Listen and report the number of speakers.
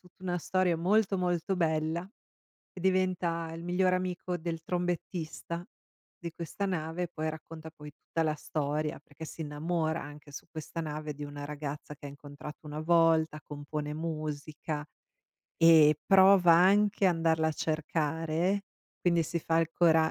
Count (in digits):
1